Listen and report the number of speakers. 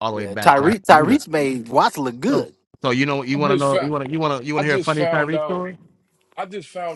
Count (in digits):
3